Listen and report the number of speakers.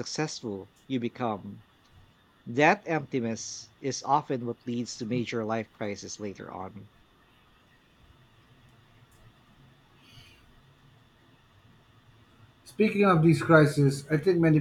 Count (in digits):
2